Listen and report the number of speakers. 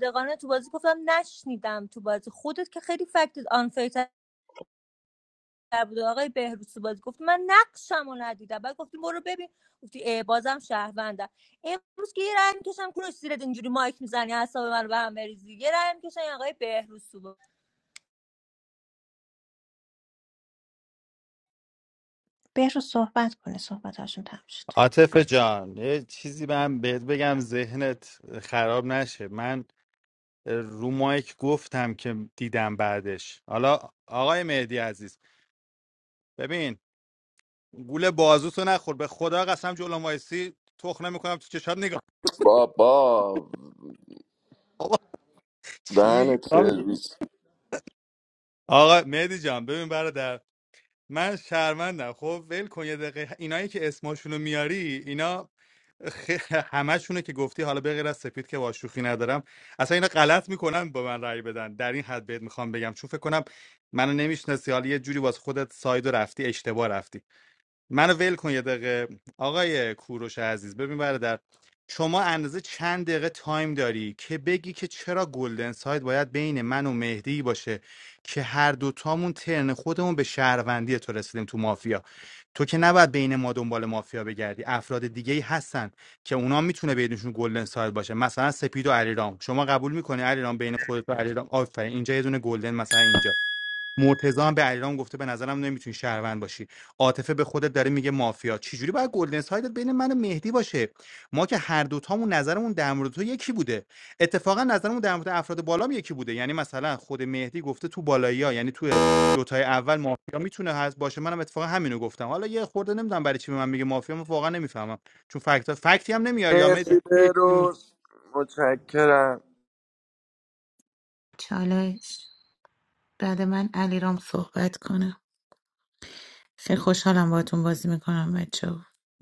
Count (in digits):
5